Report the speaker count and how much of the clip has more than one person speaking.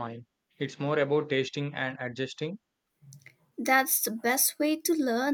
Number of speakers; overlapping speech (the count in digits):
2, no overlap